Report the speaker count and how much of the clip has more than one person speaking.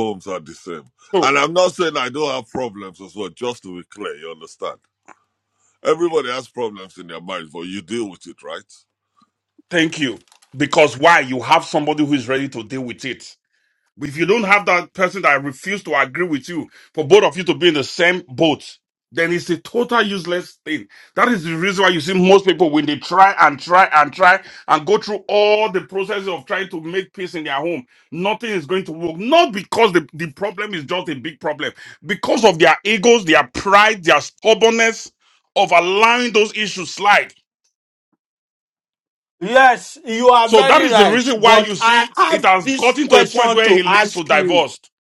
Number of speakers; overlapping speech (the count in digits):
3, about 9%